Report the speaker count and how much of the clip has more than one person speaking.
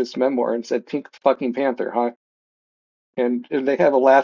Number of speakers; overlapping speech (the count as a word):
one, no overlap